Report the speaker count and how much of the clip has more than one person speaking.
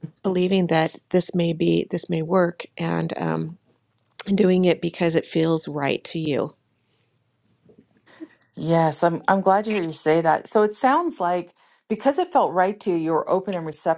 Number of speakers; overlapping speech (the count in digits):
2, no overlap